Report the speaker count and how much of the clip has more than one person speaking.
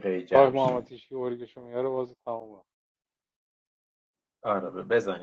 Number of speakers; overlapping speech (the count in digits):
2, about 9%